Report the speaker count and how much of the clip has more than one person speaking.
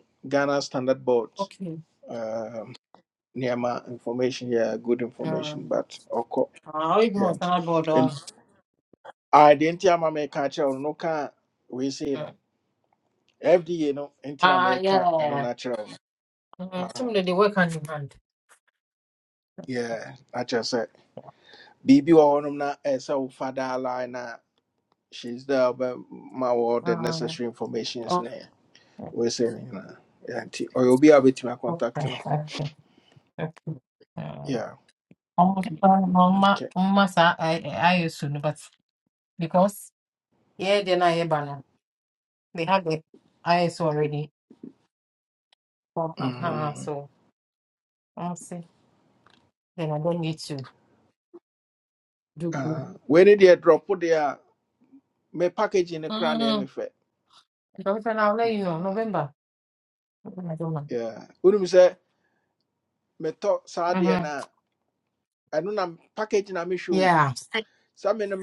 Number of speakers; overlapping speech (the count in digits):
2, about 8%